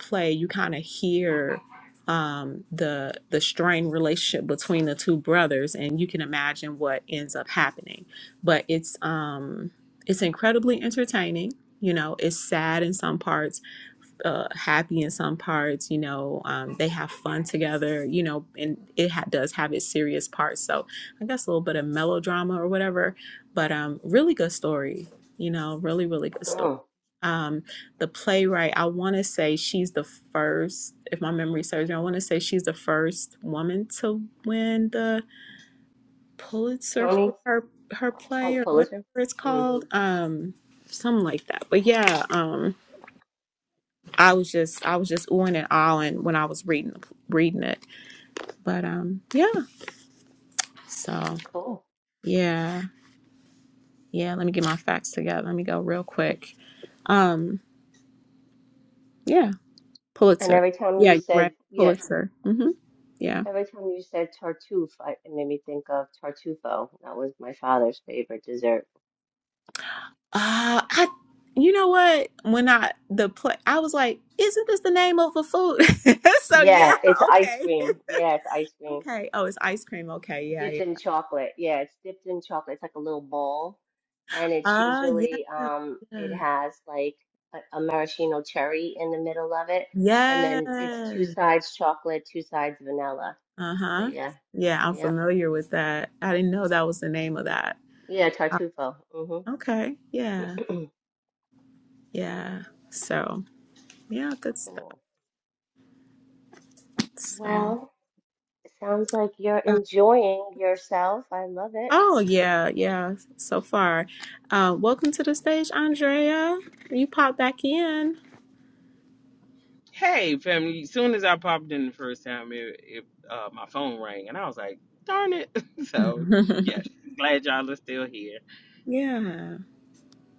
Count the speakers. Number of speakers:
3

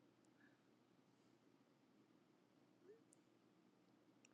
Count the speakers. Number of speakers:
0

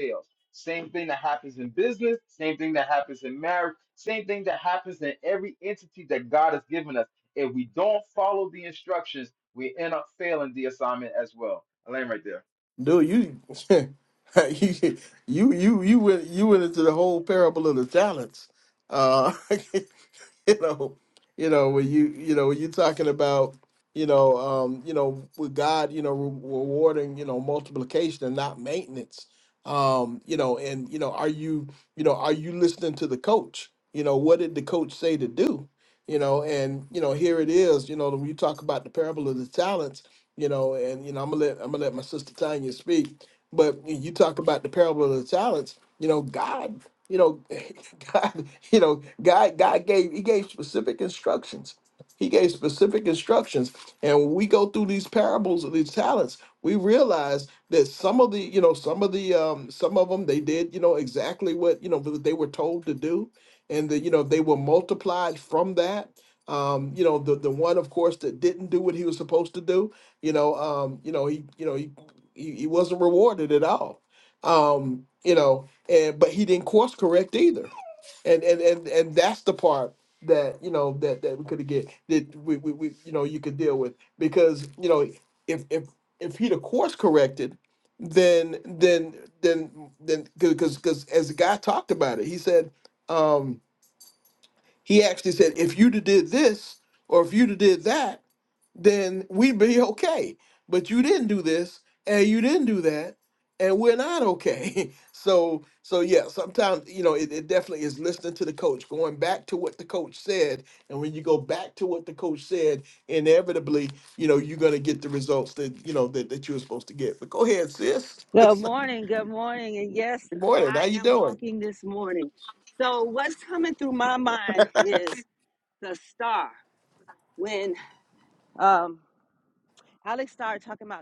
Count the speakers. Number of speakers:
3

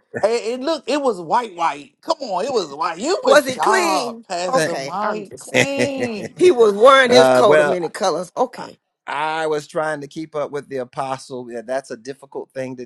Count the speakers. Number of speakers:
3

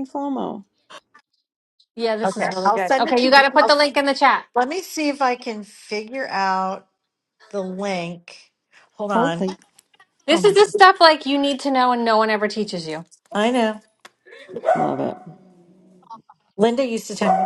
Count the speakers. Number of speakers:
3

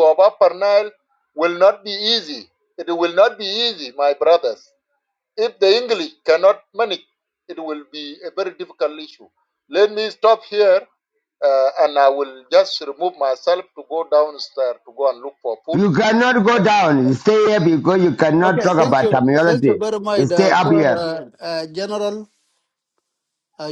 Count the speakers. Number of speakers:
3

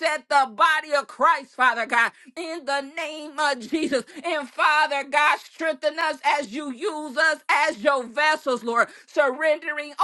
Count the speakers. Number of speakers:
1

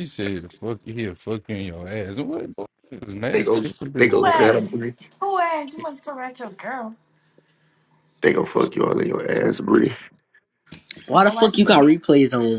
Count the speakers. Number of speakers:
4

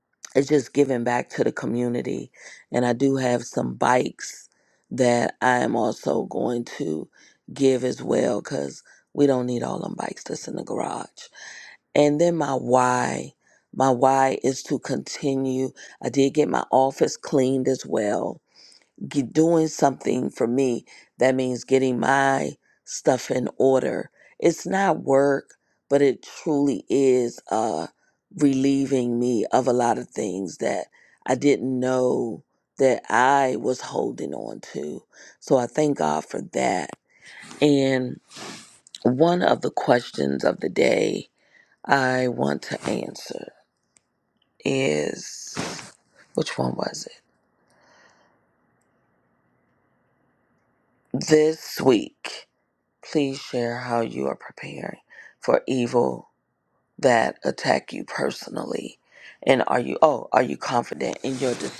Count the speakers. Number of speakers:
1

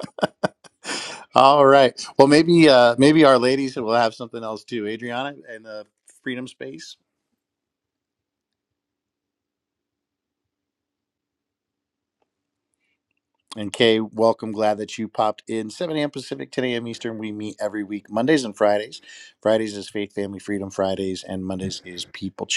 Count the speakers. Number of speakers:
1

